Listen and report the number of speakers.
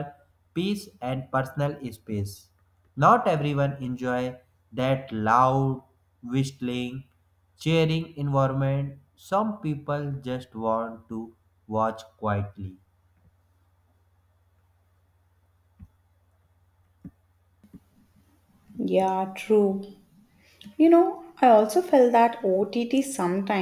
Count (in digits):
2